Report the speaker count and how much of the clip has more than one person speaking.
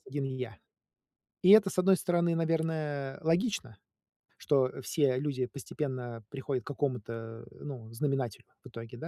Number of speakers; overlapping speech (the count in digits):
1, no overlap